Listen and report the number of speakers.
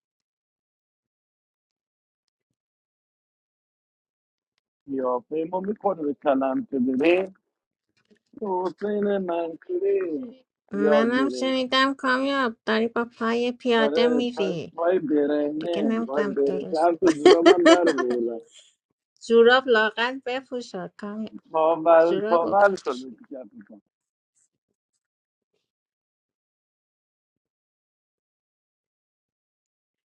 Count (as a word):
two